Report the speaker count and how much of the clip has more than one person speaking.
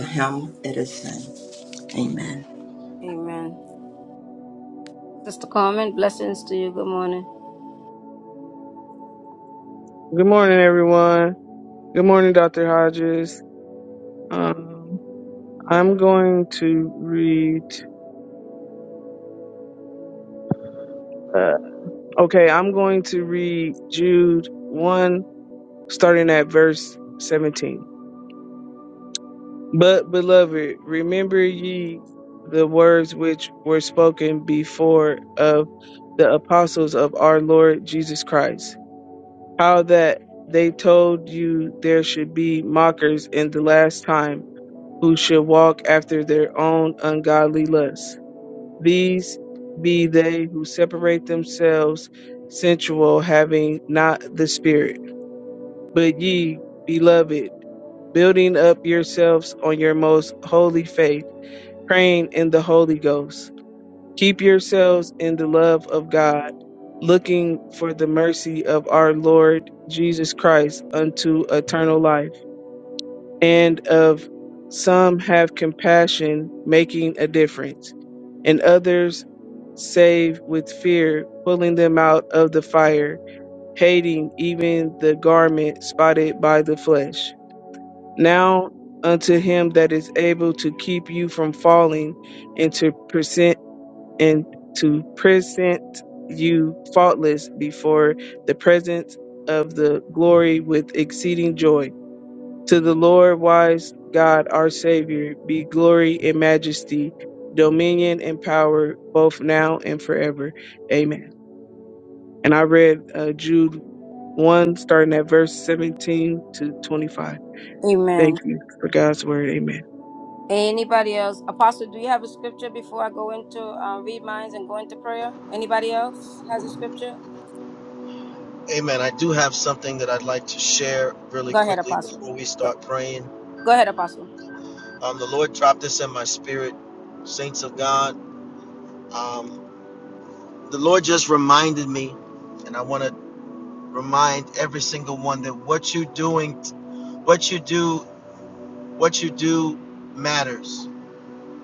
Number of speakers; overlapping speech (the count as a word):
four, about 1%